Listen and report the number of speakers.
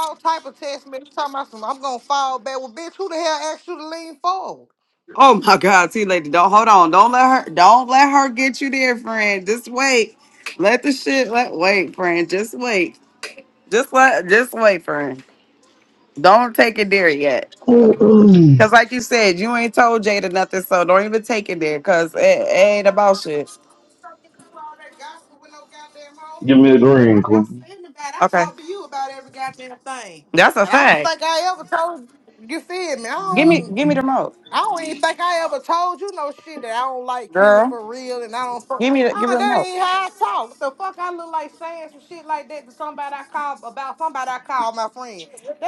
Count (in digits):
3